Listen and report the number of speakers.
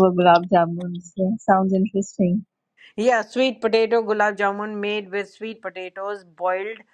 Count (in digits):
2